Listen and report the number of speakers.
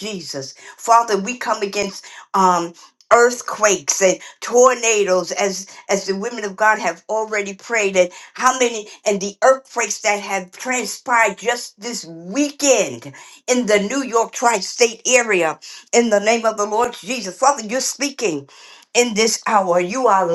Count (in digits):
1